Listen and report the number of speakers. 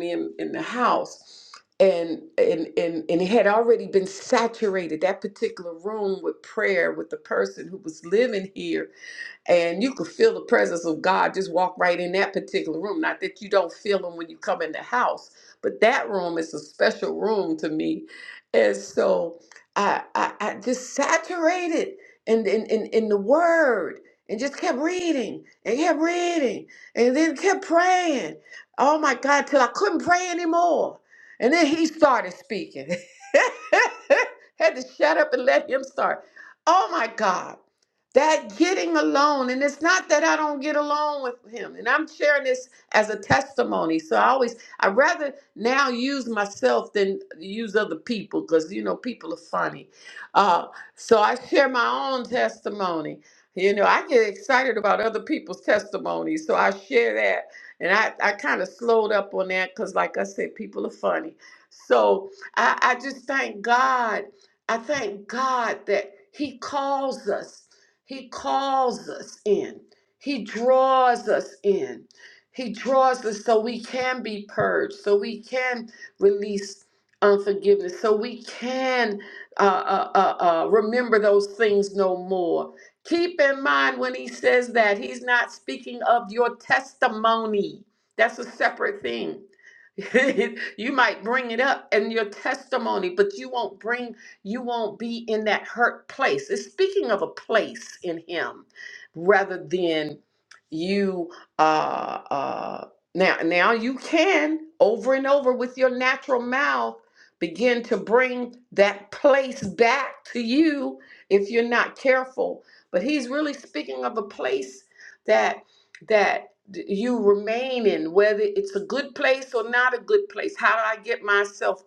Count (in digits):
1